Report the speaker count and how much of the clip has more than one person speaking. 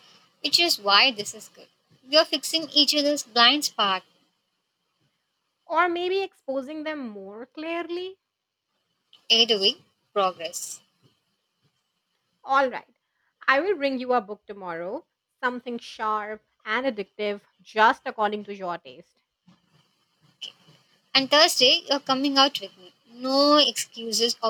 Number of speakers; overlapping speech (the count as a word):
two, no overlap